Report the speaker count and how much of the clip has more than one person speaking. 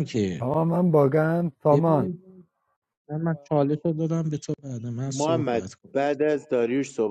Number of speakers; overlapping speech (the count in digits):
3, about 12%